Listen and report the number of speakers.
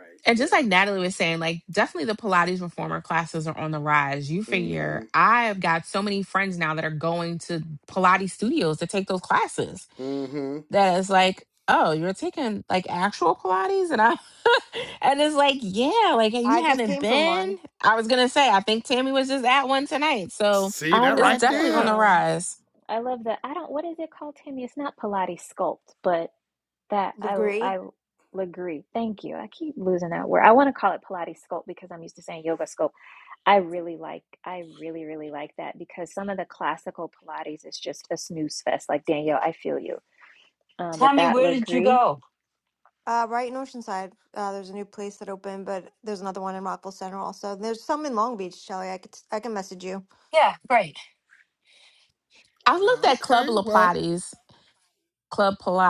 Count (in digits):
5